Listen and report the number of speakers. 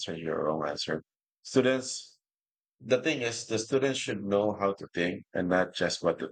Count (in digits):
1